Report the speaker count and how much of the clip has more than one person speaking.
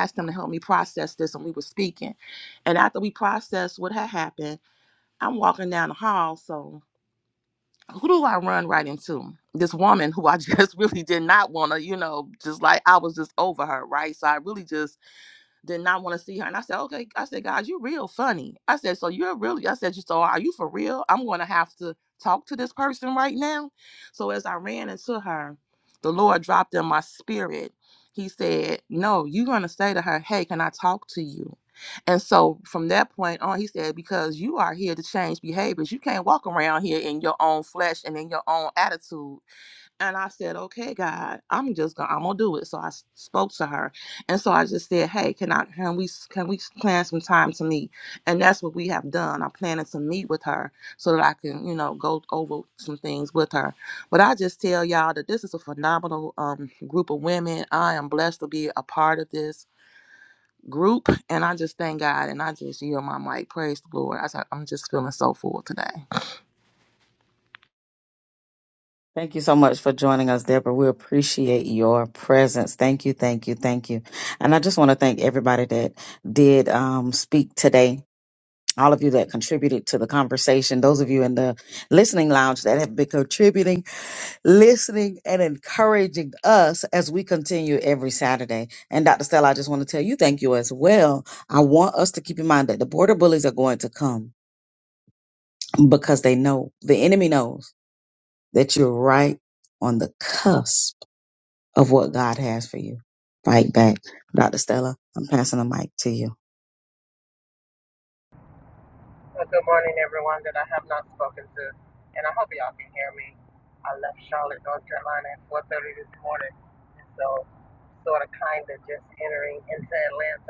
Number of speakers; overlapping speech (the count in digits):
3, no overlap